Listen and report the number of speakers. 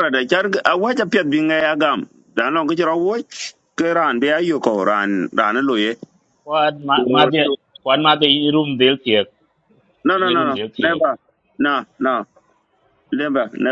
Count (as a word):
two